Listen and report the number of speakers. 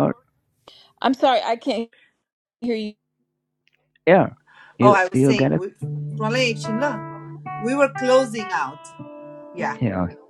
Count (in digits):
3